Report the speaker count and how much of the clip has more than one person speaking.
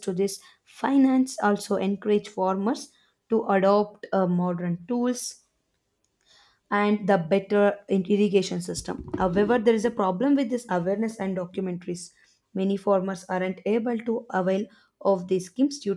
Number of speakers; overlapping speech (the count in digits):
1, no overlap